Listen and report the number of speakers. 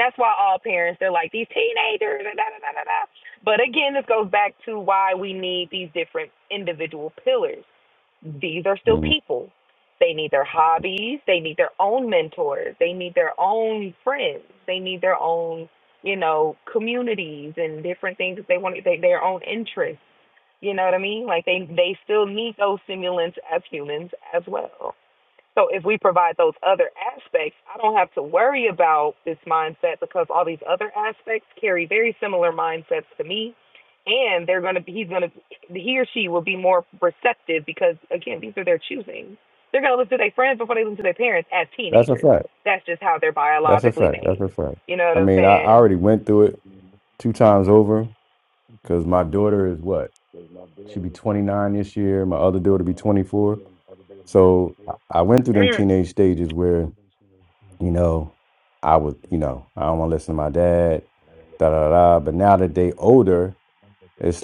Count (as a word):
two